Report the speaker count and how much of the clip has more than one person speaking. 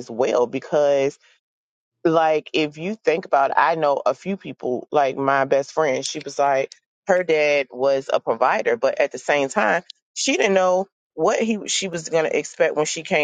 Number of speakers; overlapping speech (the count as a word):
one, no overlap